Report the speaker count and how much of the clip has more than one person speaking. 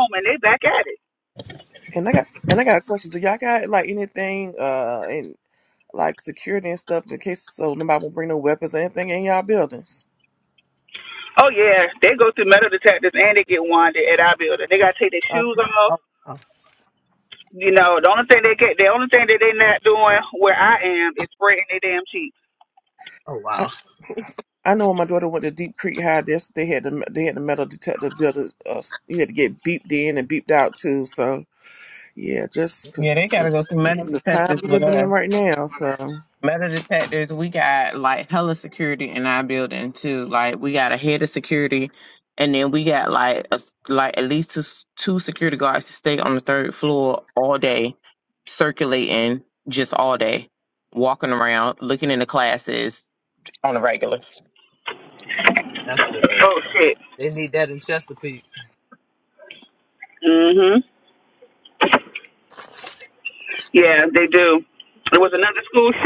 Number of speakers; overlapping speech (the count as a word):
four, about 4%